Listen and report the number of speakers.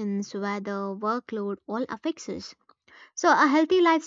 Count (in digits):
1